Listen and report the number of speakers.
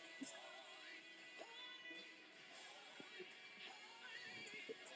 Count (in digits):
0